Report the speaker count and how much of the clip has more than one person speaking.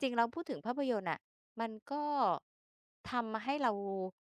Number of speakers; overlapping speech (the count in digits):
1, no overlap